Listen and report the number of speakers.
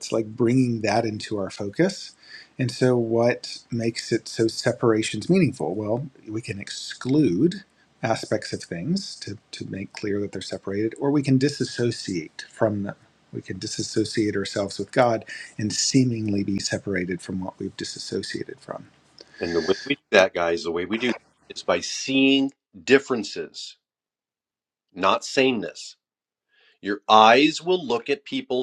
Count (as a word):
two